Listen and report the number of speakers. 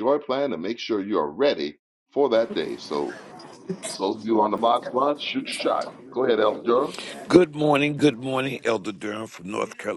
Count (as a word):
two